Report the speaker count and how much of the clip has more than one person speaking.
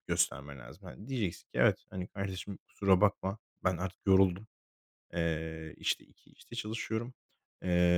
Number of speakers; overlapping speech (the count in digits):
1, no overlap